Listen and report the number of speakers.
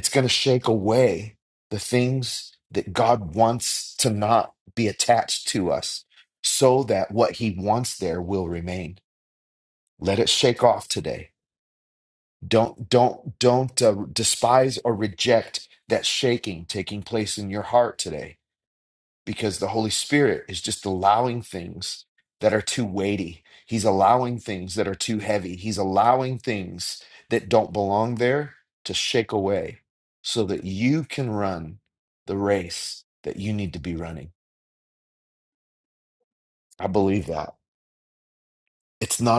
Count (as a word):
one